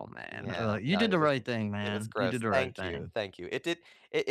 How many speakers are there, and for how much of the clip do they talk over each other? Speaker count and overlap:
2, about 51%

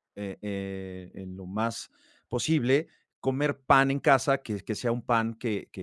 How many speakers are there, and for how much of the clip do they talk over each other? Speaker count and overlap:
1, no overlap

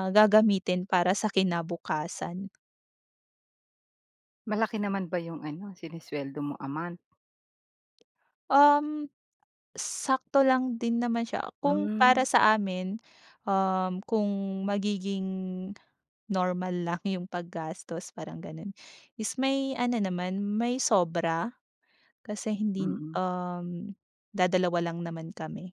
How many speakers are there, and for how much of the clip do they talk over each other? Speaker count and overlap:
2, about 4%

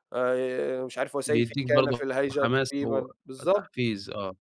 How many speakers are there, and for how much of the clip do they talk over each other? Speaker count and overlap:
2, about 36%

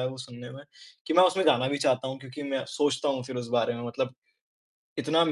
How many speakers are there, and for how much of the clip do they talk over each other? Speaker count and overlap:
1, no overlap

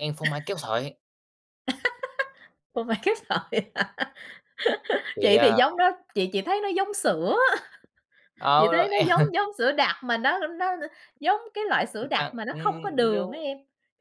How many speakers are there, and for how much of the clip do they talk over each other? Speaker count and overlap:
2, about 18%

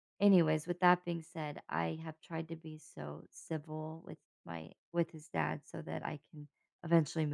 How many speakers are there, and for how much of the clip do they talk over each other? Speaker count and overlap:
1, no overlap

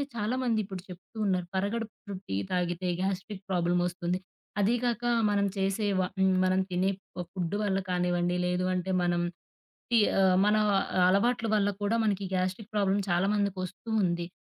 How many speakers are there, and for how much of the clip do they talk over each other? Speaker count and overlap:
1, no overlap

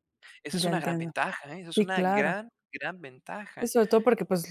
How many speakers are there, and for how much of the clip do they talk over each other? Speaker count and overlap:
2, about 27%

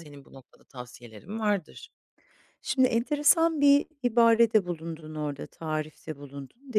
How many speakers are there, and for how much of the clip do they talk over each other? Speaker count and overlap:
2, about 1%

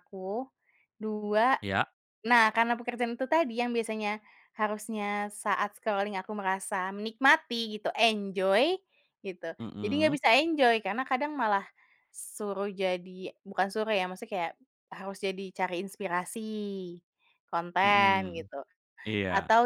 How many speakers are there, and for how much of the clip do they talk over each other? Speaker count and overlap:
2, about 7%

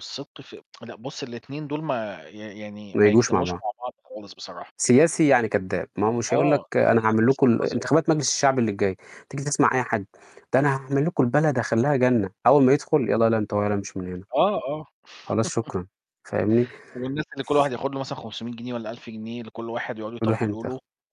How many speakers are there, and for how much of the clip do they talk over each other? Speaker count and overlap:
2, about 13%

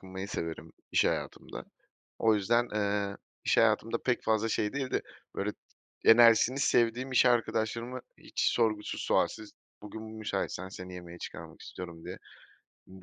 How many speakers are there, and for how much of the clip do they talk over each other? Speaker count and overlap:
1, no overlap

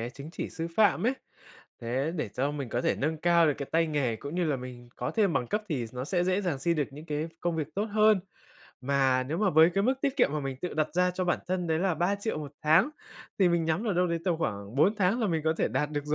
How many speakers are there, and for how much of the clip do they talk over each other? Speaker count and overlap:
1, no overlap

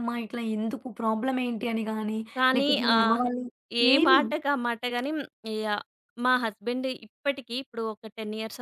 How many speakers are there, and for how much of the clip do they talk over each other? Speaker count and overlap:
2, about 12%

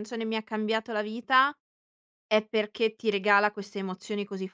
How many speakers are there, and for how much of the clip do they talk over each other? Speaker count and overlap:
1, no overlap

